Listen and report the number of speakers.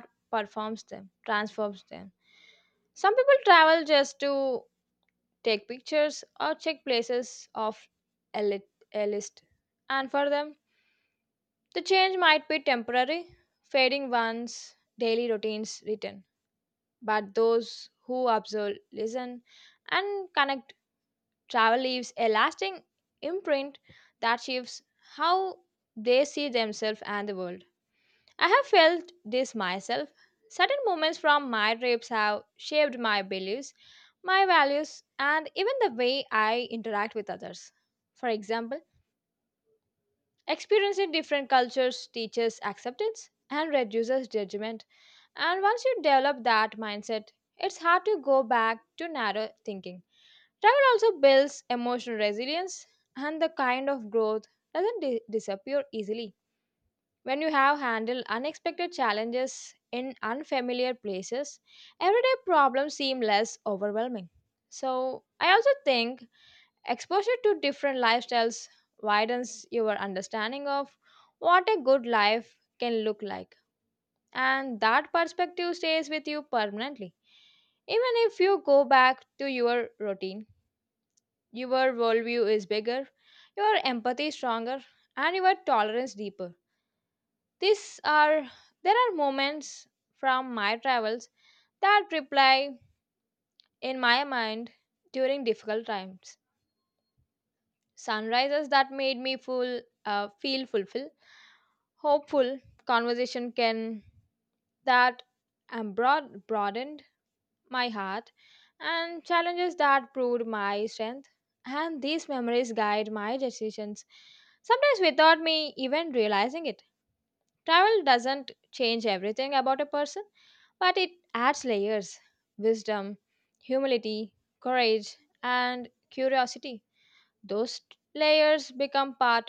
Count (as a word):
one